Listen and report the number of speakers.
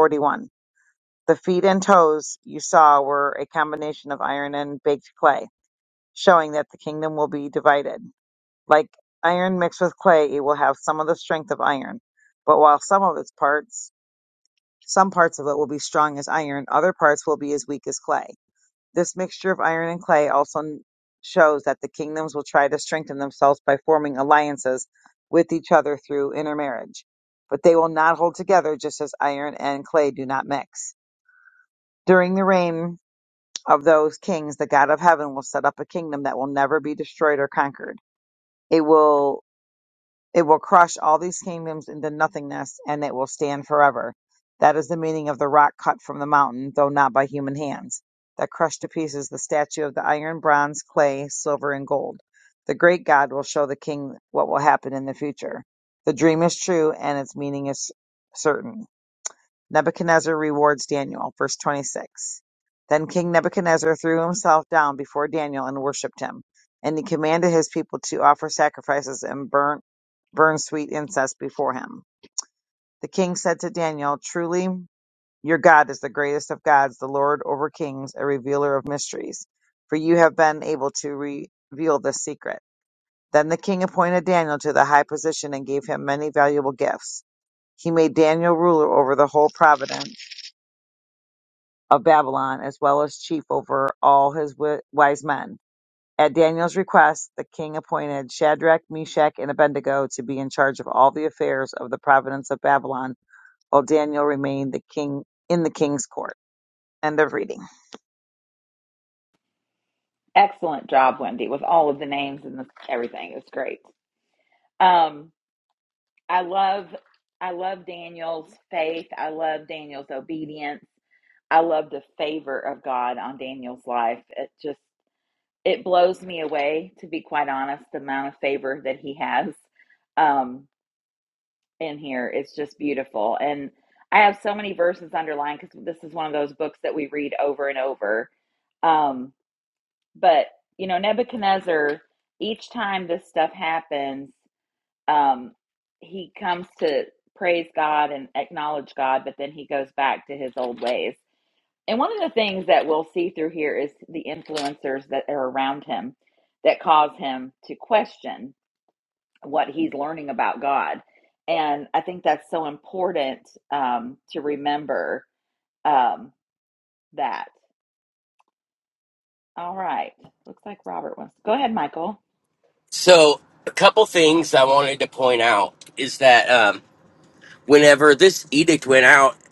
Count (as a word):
three